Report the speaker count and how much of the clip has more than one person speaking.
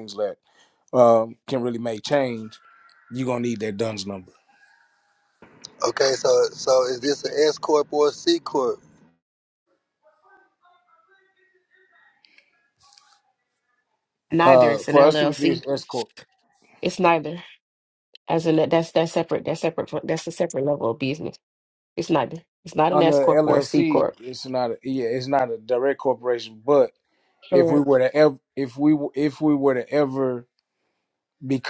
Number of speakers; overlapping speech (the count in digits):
3, about 9%